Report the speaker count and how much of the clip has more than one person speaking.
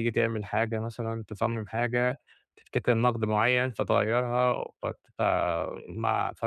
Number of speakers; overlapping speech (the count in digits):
1, no overlap